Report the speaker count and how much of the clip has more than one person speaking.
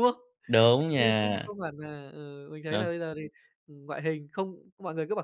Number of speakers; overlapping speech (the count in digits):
2, about 14%